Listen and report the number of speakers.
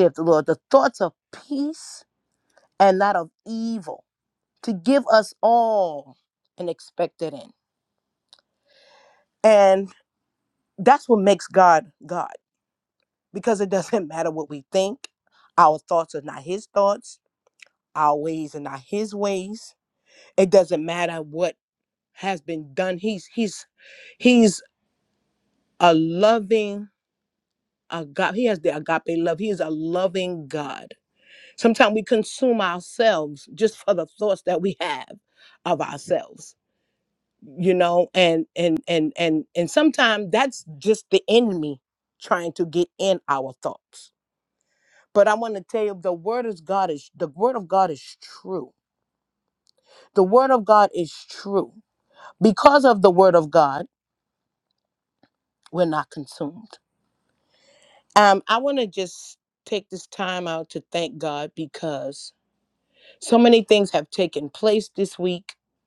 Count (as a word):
one